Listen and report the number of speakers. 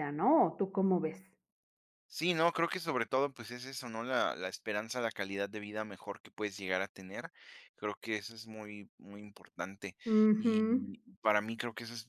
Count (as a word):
two